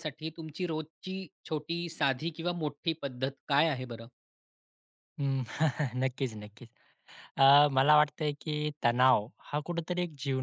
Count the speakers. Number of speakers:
2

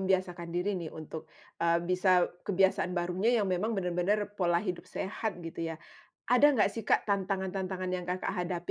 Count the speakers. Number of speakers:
1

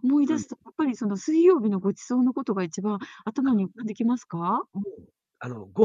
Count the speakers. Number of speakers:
2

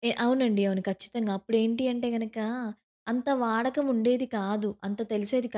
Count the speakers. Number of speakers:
1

